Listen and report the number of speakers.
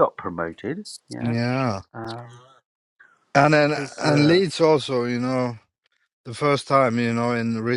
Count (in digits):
2